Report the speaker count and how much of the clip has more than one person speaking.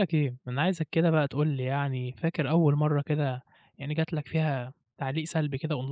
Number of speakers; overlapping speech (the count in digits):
1, no overlap